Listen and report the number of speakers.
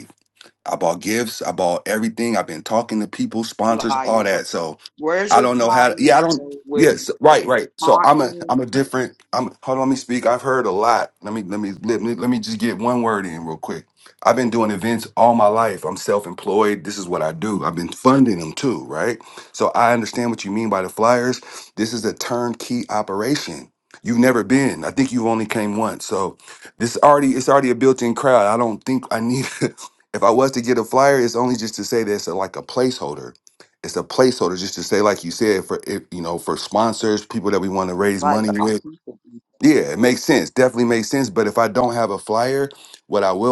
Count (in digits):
2